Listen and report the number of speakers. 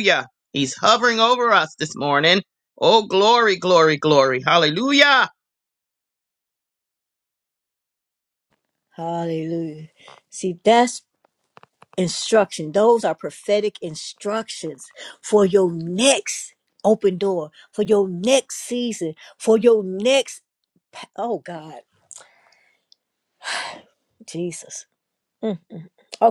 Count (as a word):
two